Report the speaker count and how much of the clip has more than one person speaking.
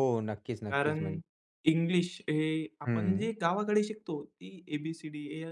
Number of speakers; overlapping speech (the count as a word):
two, about 17%